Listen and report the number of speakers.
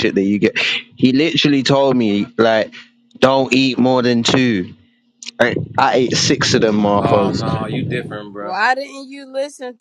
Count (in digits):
3